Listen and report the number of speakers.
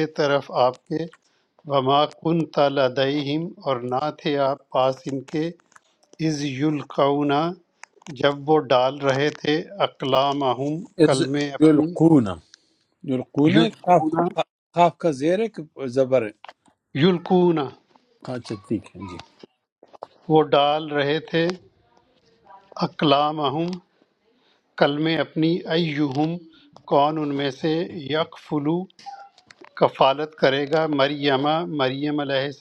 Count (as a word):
two